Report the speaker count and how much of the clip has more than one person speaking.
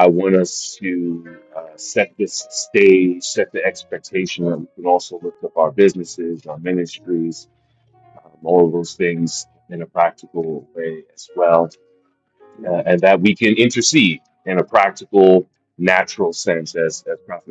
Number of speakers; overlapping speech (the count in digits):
1, no overlap